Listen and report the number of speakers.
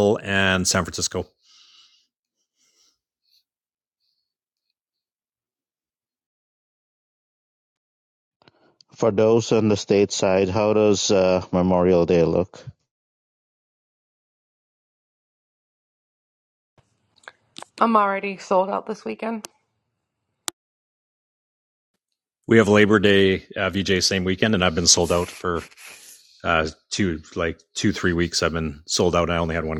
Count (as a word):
three